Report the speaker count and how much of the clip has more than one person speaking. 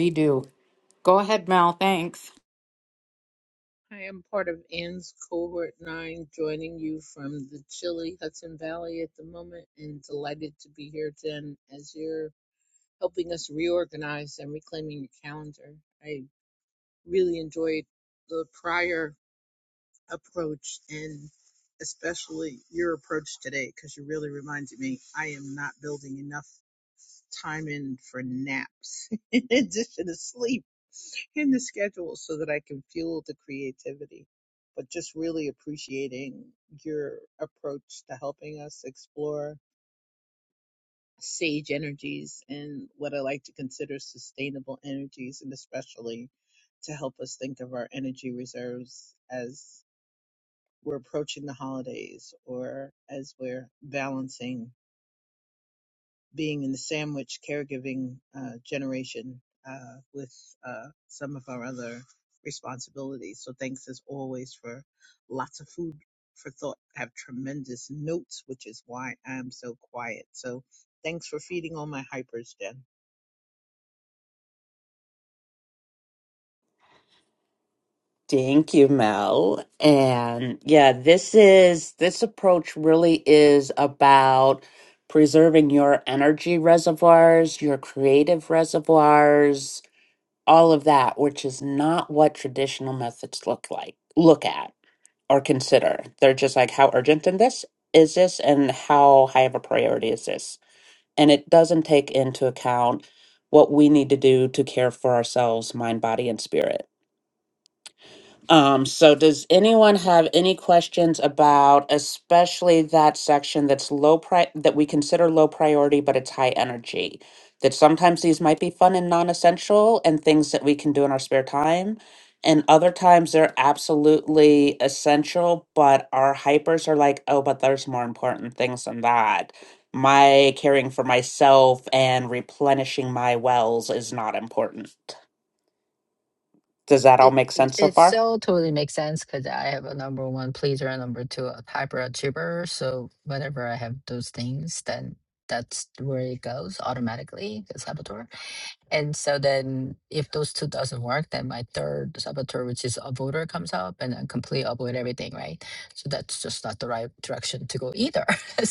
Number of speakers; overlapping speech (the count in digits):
4, about 1%